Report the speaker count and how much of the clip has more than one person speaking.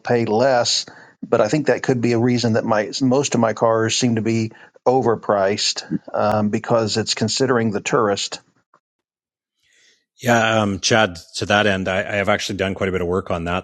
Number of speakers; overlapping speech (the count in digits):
2, no overlap